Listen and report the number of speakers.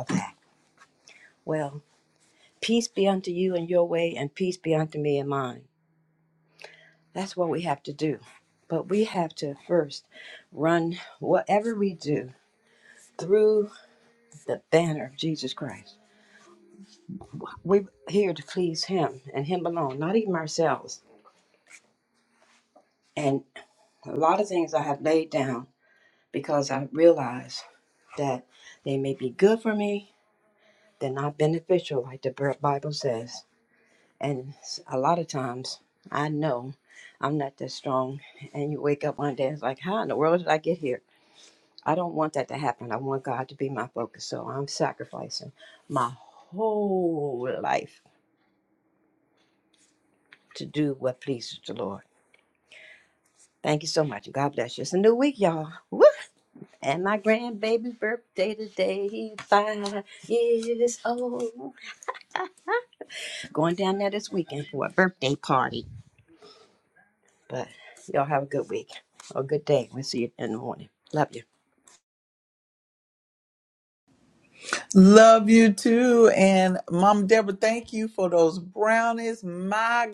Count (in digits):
2